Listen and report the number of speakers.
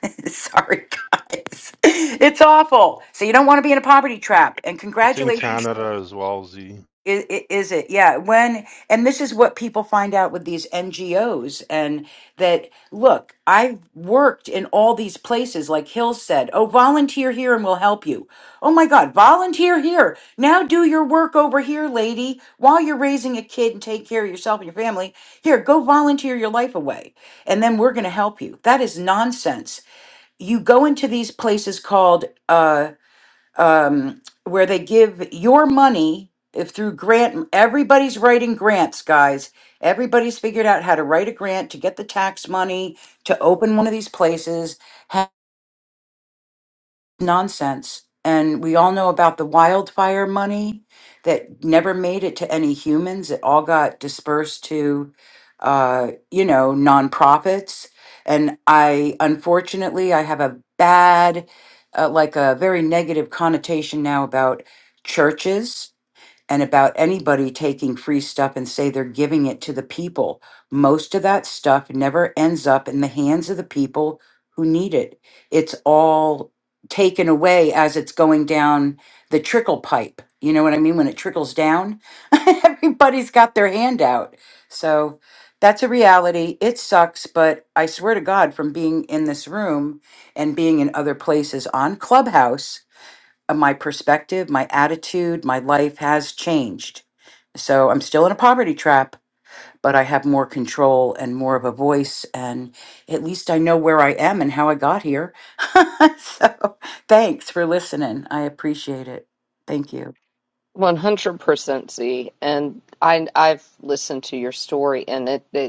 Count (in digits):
3